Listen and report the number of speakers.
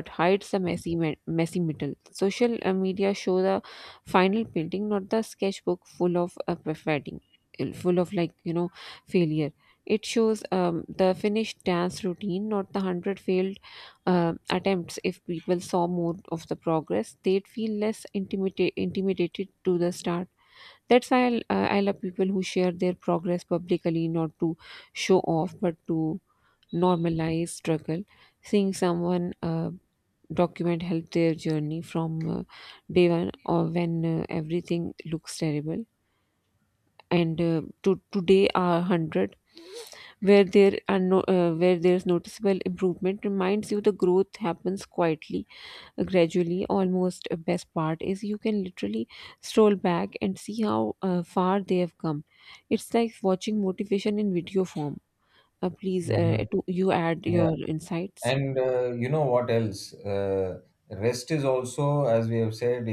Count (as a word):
two